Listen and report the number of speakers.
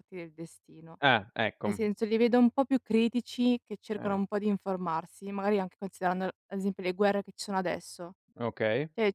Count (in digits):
2